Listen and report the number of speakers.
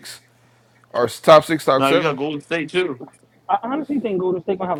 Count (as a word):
three